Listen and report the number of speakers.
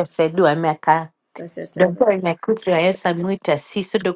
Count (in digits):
1